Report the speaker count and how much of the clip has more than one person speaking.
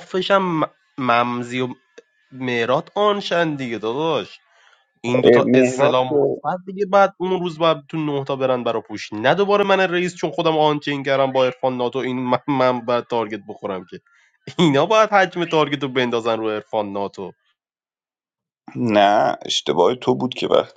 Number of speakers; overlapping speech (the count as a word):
two, about 3%